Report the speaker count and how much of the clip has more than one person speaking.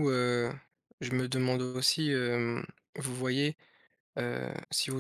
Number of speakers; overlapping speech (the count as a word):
one, no overlap